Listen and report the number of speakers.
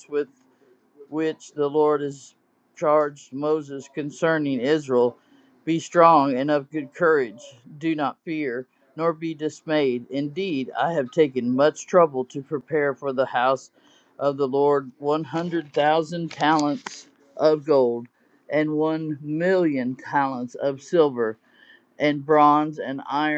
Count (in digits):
1